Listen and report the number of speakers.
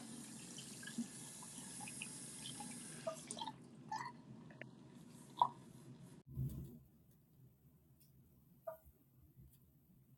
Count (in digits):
0